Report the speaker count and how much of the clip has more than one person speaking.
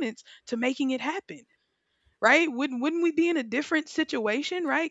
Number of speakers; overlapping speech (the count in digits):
1, no overlap